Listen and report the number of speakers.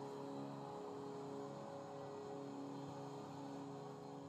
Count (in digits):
0